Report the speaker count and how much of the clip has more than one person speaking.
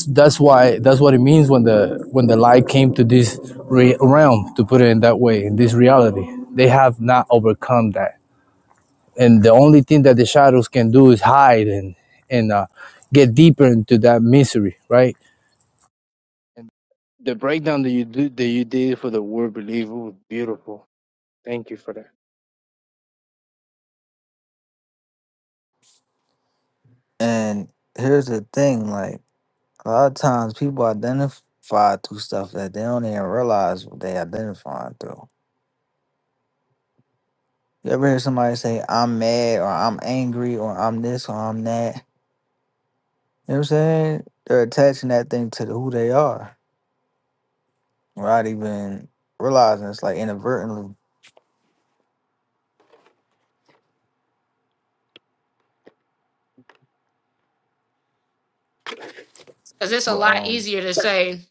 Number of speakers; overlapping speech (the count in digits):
3, about 1%